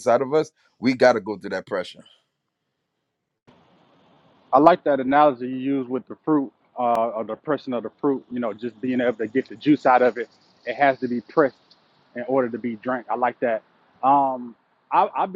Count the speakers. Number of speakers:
two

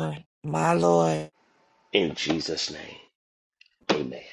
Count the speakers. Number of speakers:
two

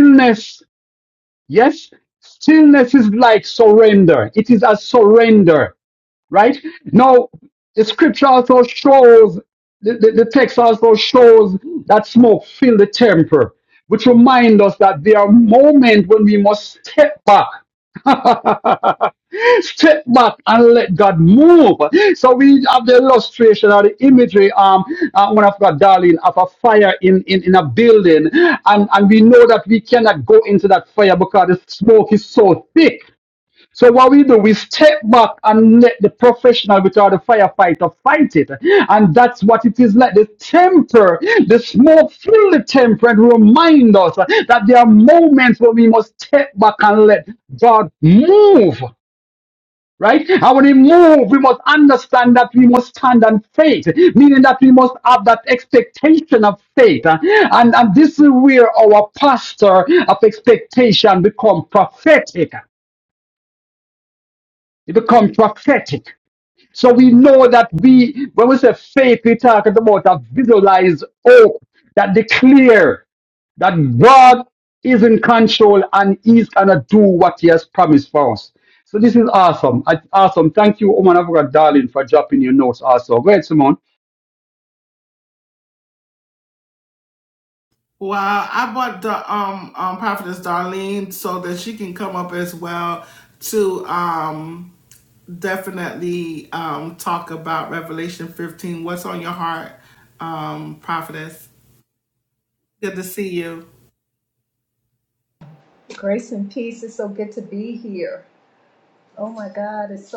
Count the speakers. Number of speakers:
three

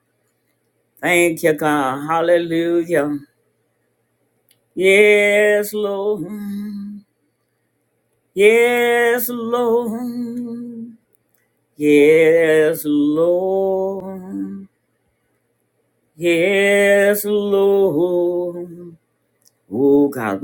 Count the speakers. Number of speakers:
one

